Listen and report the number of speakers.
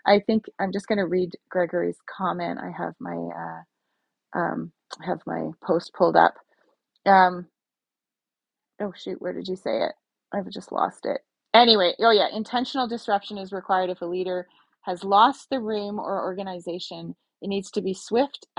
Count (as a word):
one